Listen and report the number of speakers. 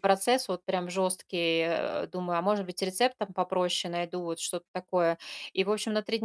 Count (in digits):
1